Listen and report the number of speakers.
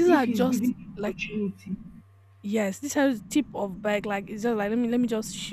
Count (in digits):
2